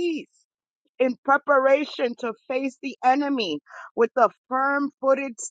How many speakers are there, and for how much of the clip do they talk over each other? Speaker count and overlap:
one, no overlap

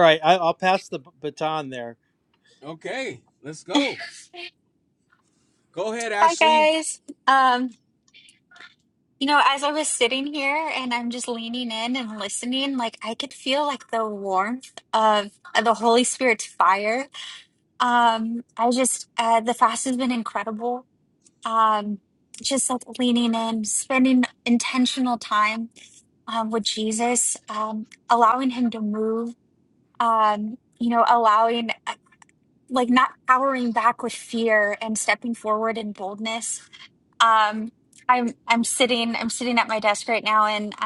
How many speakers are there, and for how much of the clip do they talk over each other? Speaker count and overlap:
three, about 1%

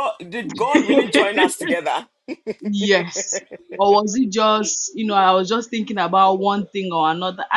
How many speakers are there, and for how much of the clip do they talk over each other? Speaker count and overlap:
two, no overlap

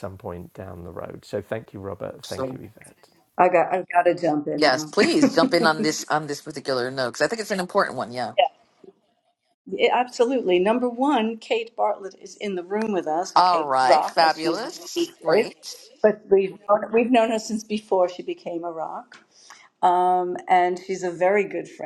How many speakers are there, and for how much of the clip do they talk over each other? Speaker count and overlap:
three, about 11%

